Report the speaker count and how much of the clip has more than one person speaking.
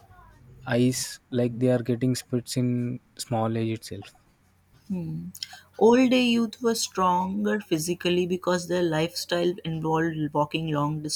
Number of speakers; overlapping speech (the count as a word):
two, no overlap